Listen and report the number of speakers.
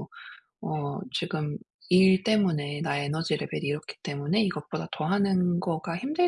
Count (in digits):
1